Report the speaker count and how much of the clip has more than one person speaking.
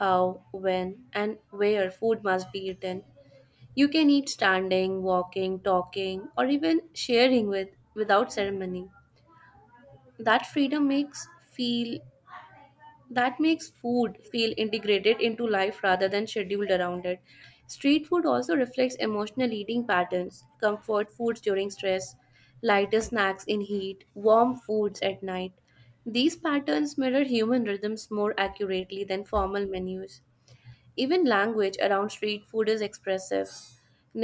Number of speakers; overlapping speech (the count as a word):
one, no overlap